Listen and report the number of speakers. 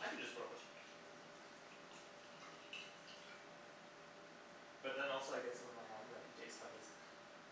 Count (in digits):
1